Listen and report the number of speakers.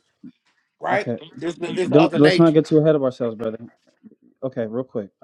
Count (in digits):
2